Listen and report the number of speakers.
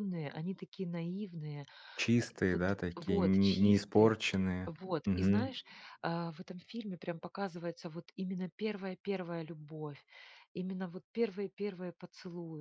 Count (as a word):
two